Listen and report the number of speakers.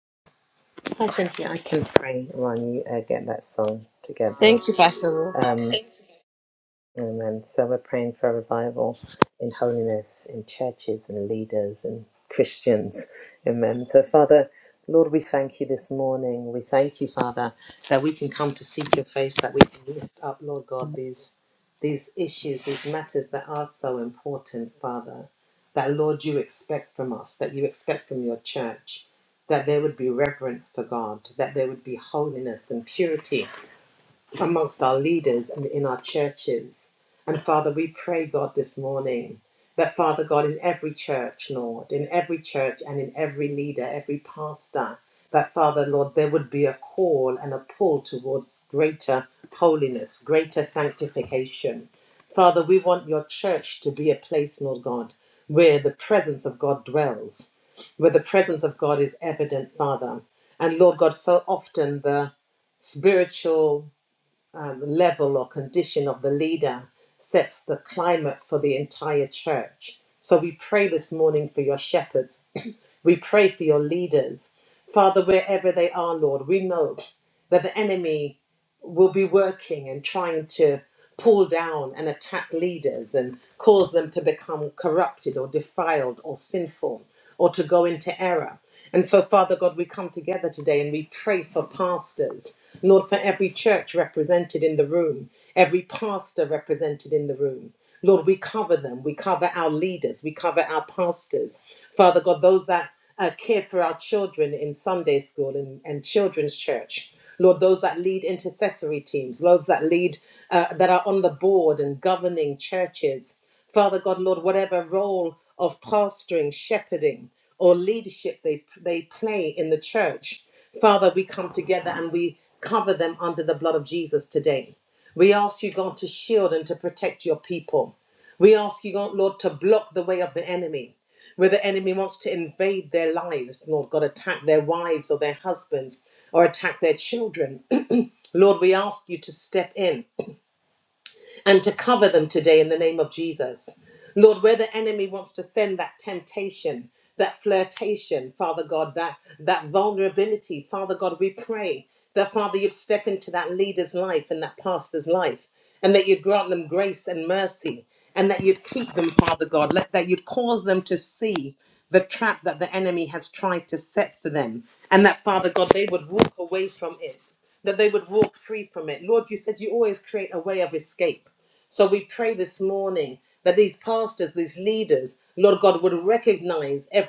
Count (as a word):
two